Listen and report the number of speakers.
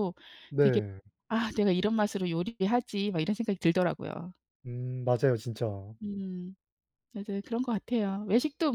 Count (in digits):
2